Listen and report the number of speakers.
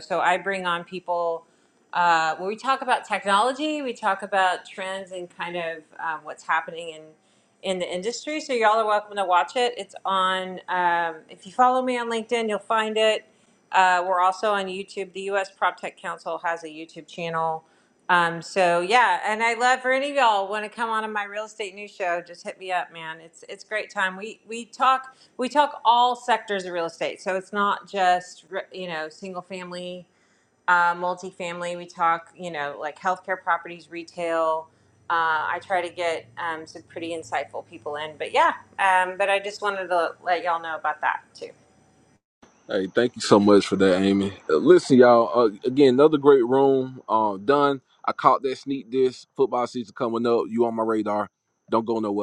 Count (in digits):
2